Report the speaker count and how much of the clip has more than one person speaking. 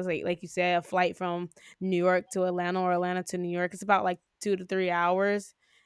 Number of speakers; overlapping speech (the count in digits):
1, no overlap